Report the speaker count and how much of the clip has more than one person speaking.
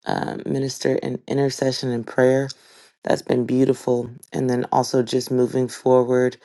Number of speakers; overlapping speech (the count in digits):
1, no overlap